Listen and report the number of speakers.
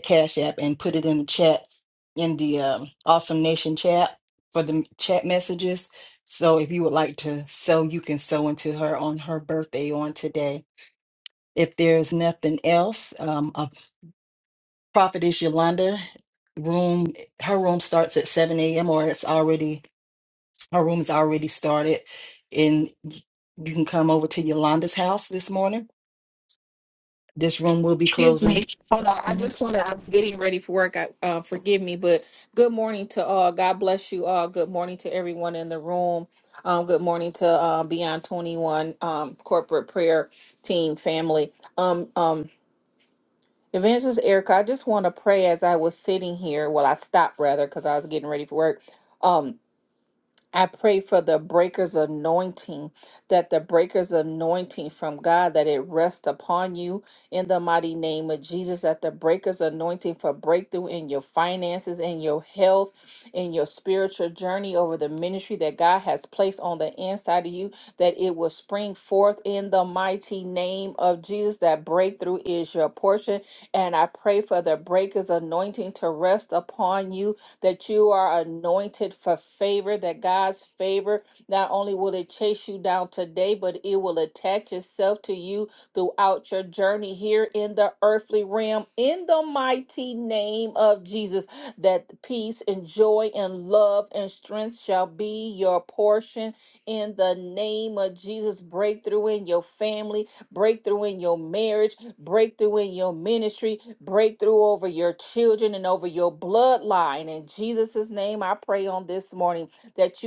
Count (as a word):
two